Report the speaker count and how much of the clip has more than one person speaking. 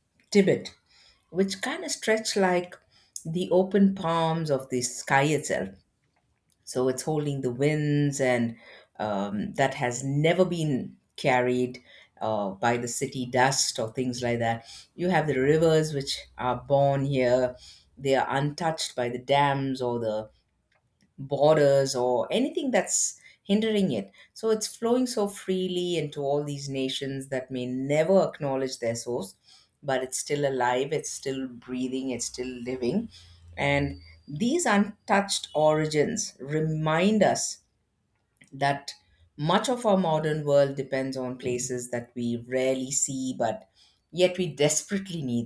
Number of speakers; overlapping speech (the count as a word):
one, no overlap